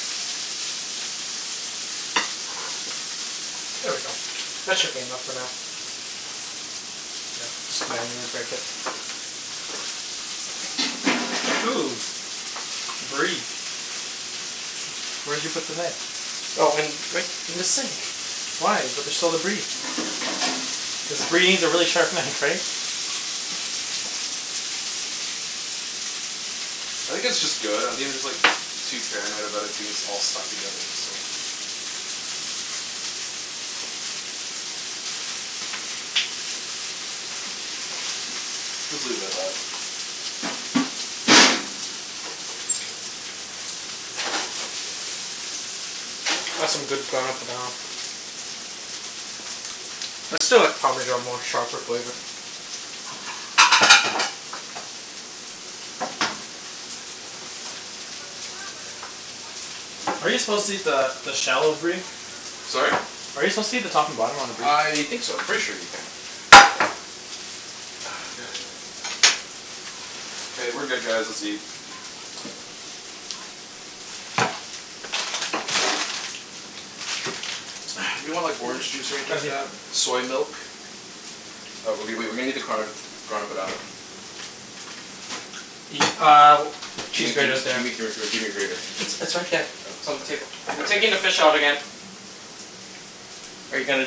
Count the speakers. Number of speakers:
three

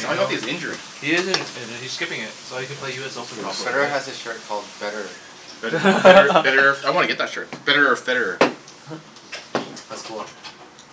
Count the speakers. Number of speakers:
three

